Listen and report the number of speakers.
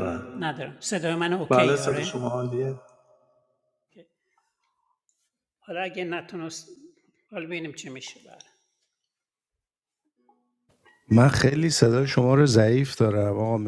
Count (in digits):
3